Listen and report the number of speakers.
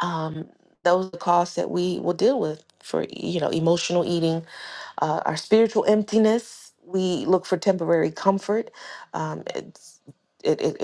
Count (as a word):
one